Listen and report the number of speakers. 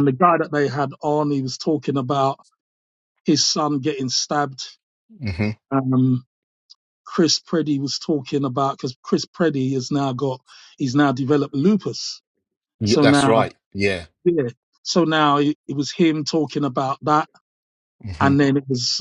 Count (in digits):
2